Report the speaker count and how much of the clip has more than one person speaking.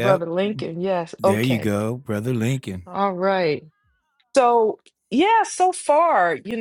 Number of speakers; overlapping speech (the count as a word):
two, about 11%